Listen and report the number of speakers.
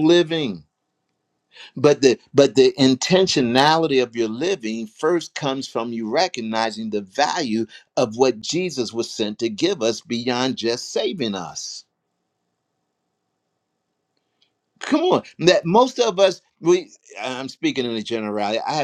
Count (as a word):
one